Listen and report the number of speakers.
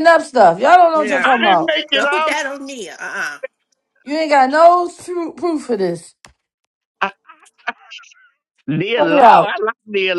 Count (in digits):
3